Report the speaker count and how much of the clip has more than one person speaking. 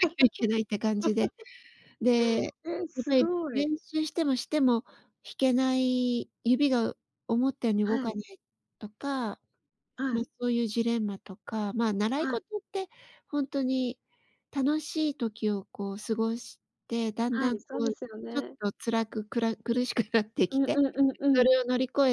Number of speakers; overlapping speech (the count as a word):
two, about 11%